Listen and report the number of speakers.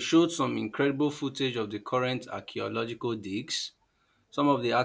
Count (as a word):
one